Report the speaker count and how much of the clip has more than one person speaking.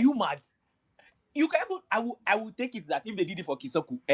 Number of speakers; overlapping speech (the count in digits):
1, no overlap